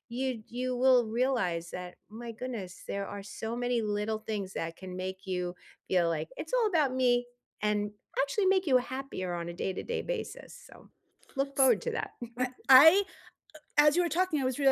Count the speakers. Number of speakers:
2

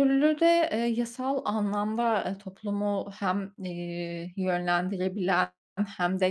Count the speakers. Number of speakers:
1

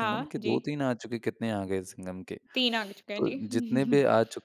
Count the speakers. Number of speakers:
2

